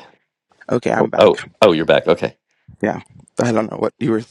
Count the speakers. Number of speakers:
2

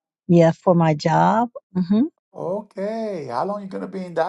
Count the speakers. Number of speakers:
2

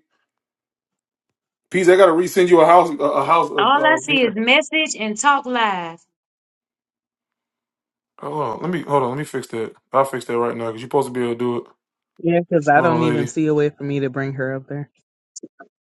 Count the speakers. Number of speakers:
3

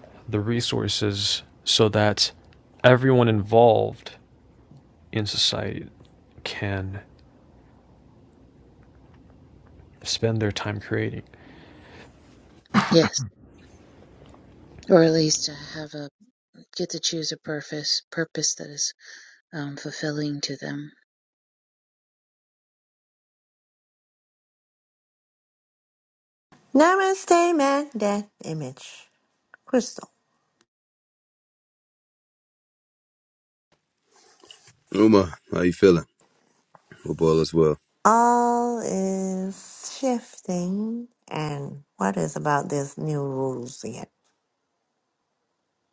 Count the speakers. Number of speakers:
4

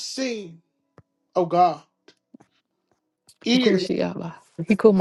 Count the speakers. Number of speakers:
2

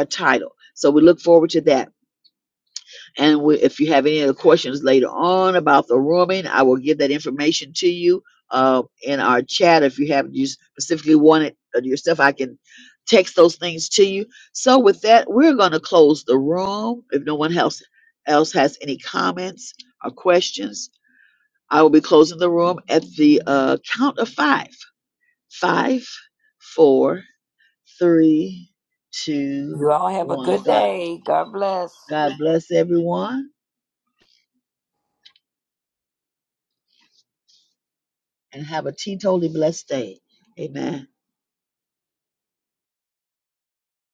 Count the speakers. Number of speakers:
2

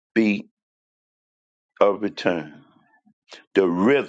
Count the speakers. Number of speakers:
1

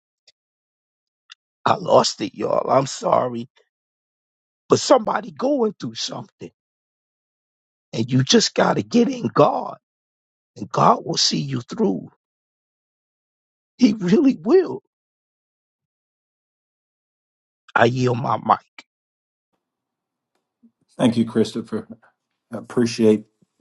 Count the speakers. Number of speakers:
2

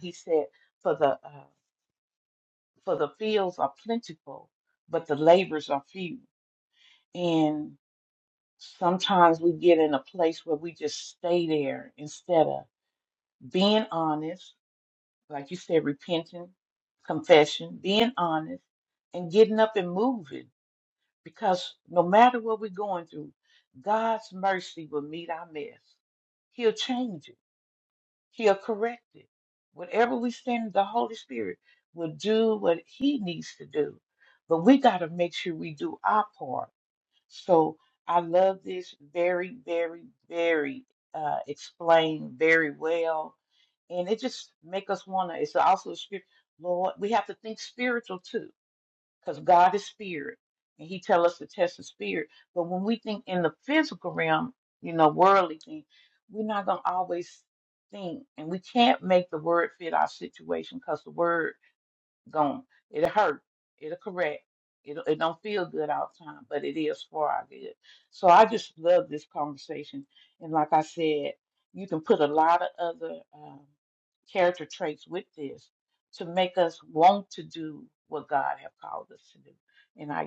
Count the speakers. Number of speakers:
1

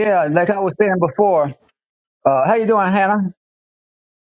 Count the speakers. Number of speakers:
1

